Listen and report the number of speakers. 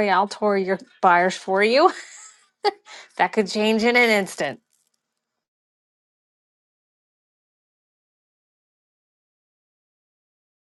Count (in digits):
1